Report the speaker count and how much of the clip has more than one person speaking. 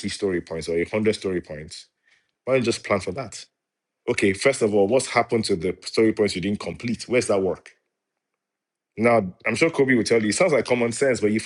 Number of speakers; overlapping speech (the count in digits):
1, no overlap